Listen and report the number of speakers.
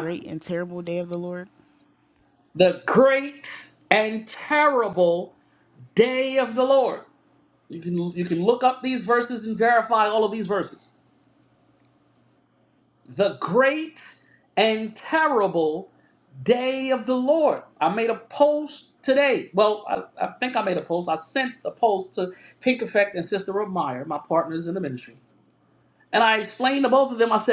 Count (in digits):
2